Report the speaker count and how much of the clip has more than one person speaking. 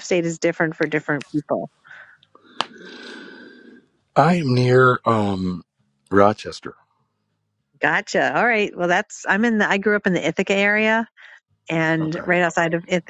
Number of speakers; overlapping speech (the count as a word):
two, about 2%